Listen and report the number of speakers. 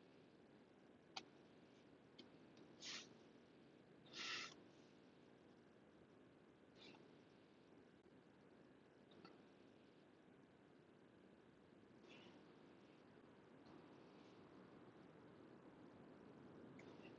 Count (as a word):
zero